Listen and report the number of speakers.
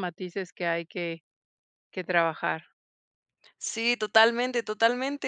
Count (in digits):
2